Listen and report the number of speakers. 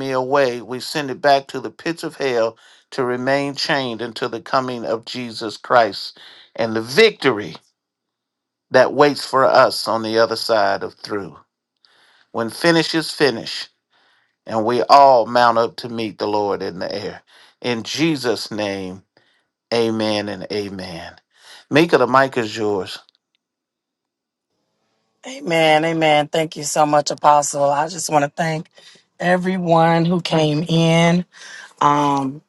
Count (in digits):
2